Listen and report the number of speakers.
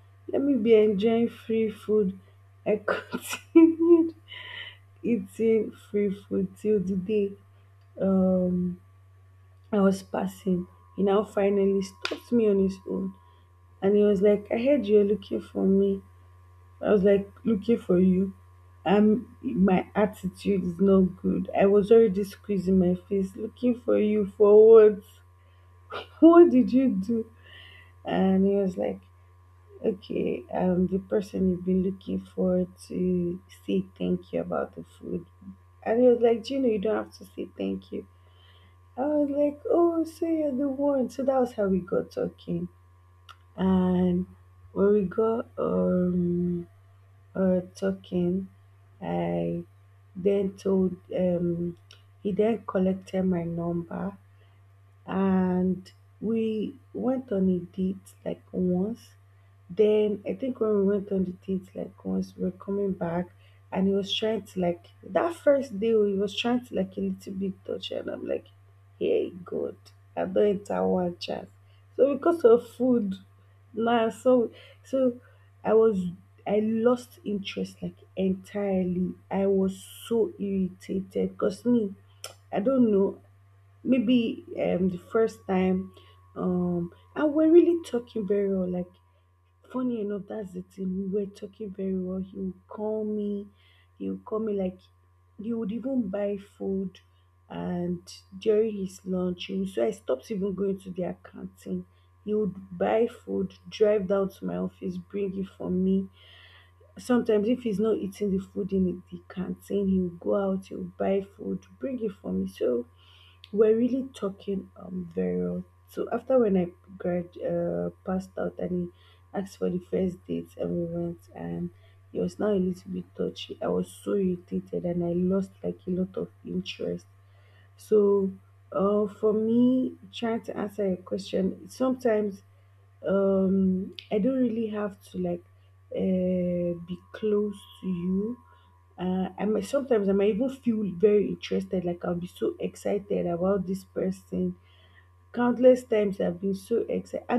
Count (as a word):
one